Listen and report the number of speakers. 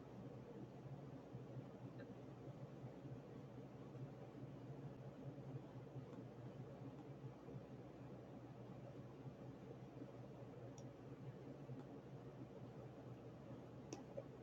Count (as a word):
zero